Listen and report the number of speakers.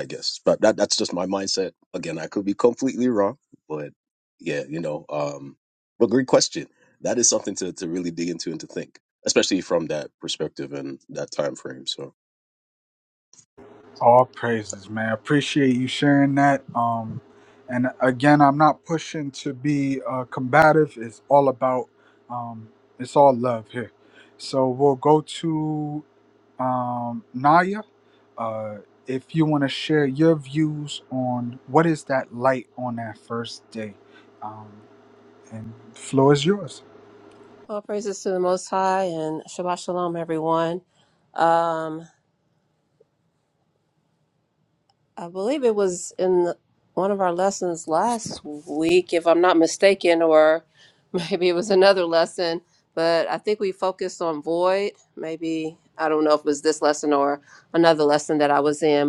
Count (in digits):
3